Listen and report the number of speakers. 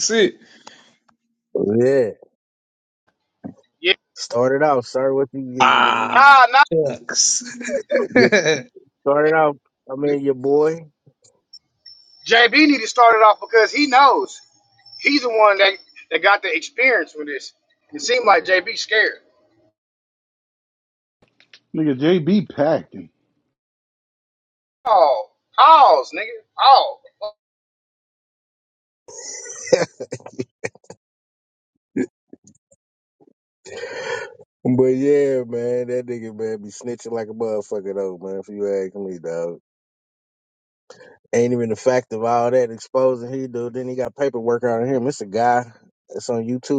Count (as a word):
four